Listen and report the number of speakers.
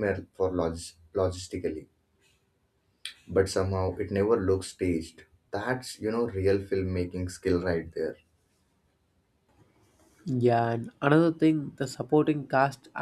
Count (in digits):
2